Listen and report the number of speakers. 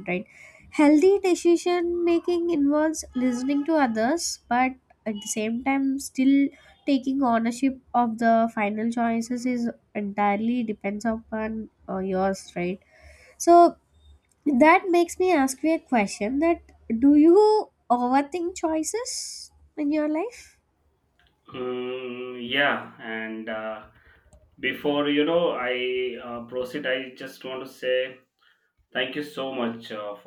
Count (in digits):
2